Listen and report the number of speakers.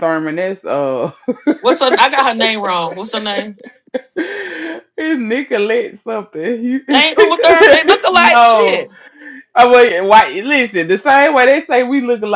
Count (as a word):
two